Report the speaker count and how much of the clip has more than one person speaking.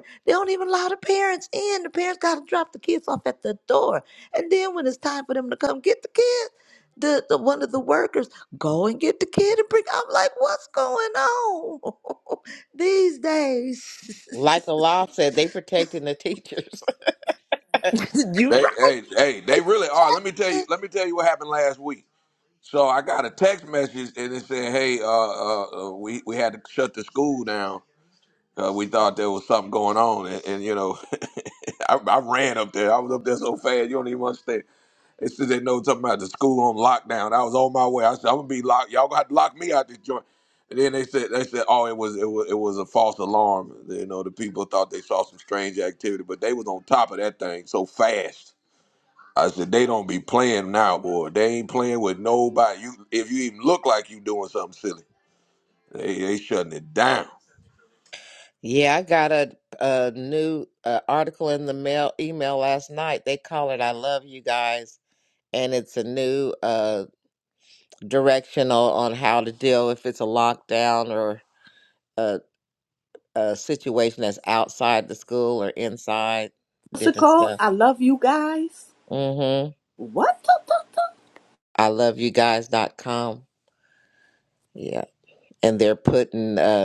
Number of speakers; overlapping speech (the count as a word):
four, about 1%